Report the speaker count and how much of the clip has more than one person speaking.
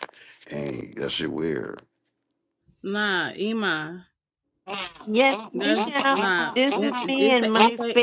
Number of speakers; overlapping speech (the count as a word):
three, about 31%